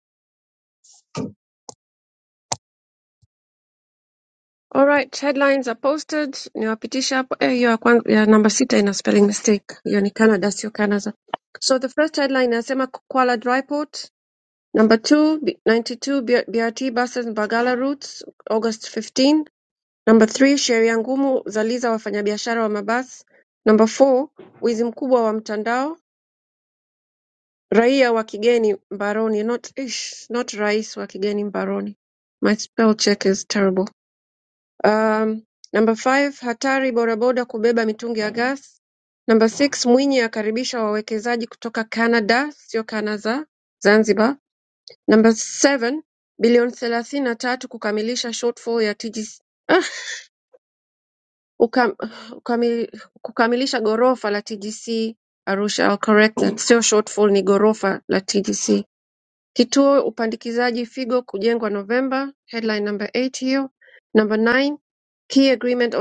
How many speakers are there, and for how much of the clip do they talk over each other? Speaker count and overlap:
1, no overlap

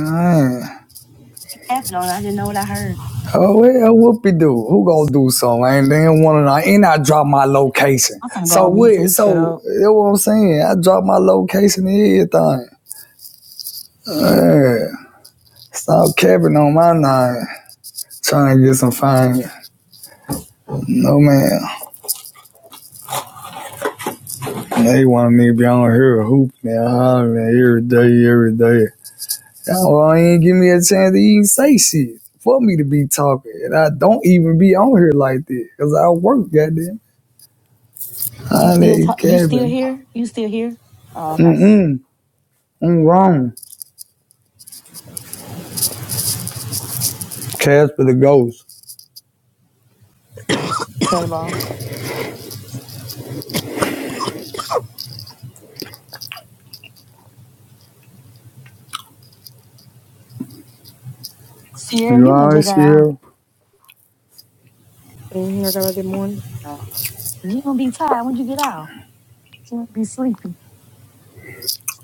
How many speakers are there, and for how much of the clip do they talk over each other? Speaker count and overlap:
3, about 5%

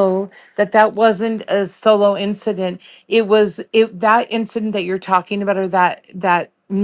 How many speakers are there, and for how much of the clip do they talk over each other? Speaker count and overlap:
1, no overlap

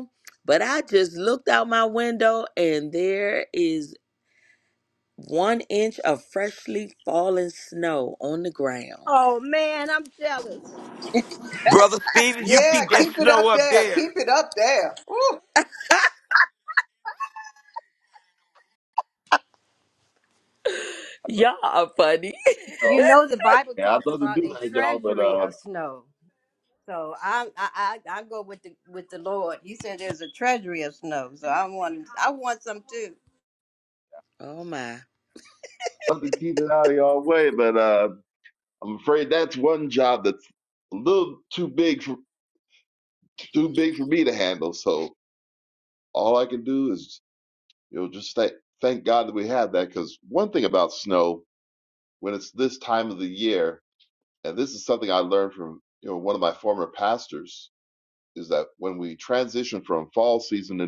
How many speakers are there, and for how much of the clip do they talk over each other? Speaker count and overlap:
5, about 6%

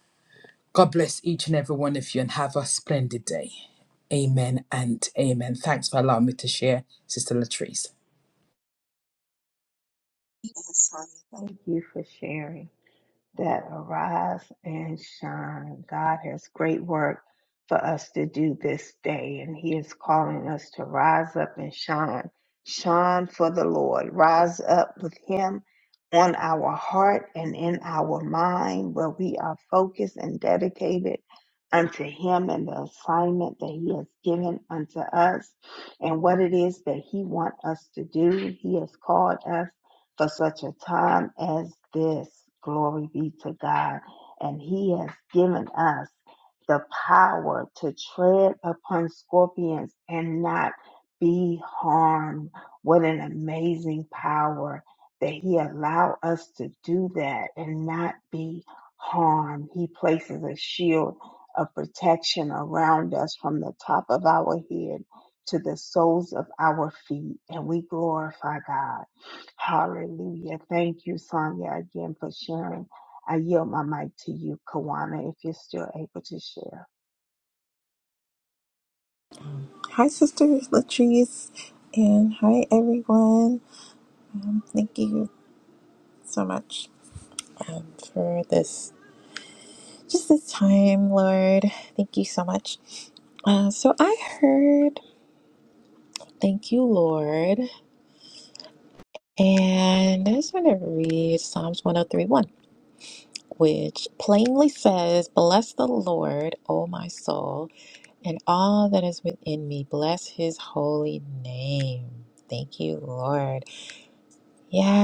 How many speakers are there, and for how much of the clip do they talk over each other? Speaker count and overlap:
3, no overlap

